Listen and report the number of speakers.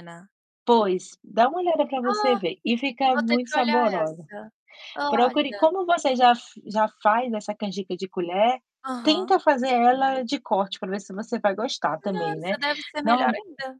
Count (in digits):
2